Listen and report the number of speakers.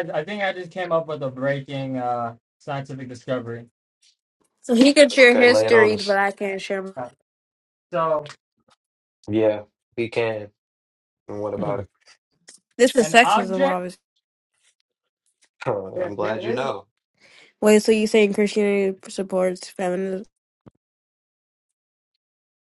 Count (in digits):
3